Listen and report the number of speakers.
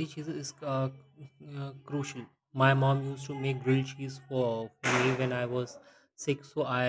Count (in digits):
1